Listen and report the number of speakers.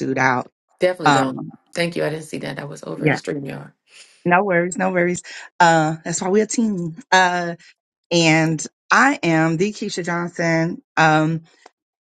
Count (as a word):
two